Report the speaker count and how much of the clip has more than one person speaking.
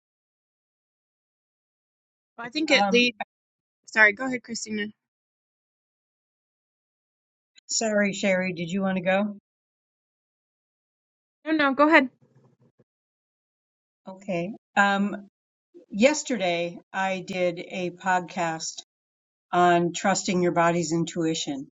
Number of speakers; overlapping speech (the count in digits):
2, about 2%